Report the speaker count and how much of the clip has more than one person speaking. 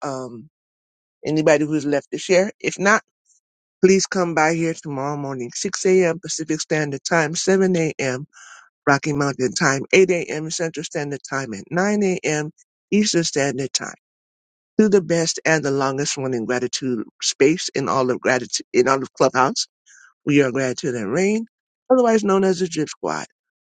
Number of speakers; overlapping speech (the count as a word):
one, no overlap